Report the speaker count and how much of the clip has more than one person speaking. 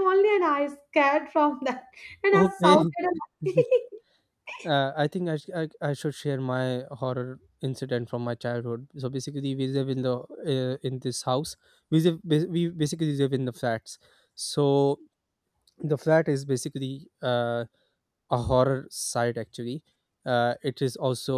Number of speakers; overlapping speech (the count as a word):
two, about 3%